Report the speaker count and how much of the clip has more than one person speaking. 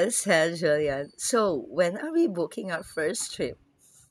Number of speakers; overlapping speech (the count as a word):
one, no overlap